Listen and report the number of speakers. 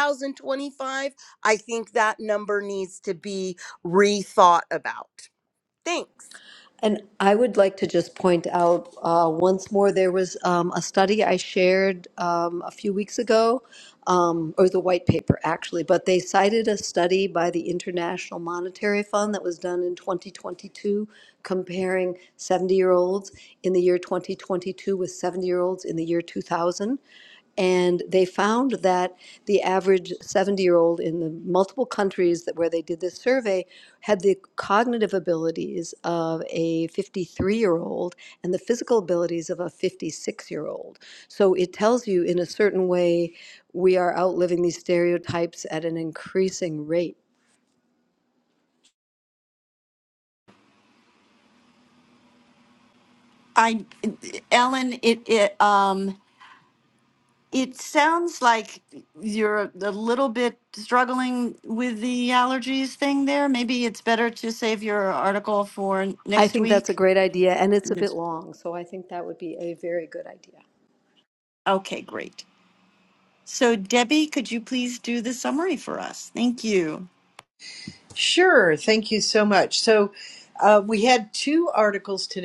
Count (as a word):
four